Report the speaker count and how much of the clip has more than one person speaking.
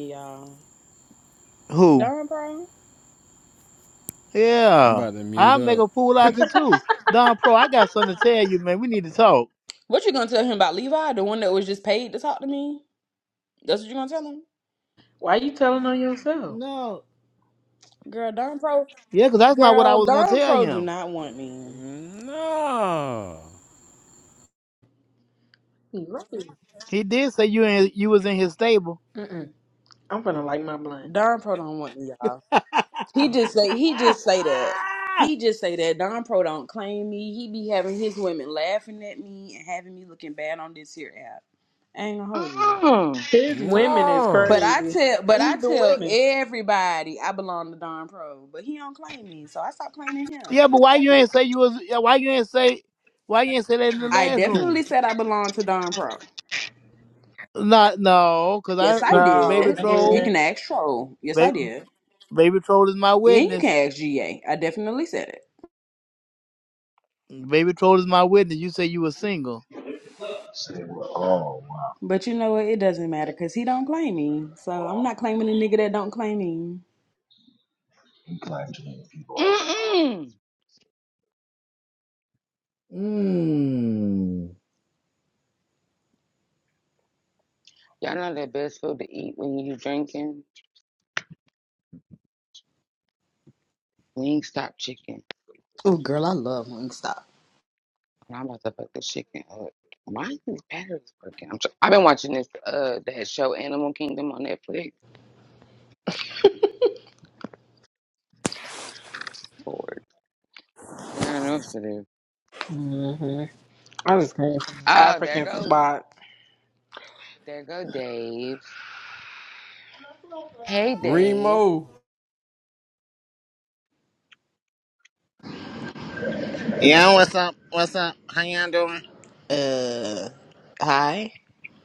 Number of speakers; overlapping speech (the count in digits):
7, about 7%